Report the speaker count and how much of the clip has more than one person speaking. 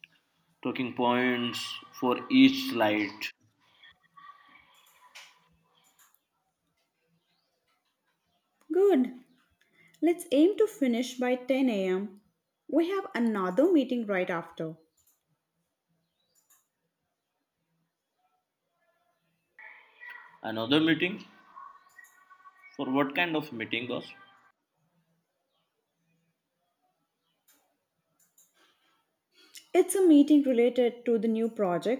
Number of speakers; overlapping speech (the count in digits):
2, no overlap